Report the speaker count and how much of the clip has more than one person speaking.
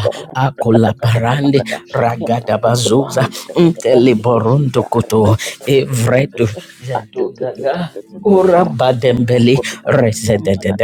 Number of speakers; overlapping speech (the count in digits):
2, about 59%